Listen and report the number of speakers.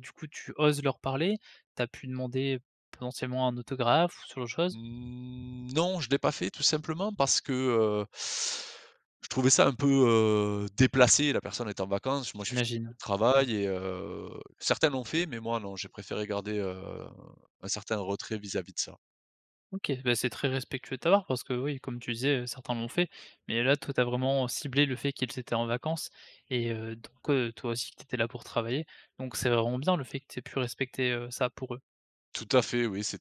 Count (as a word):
two